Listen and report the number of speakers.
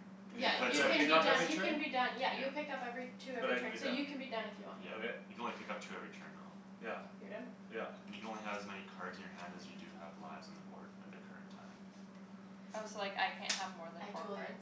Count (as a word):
four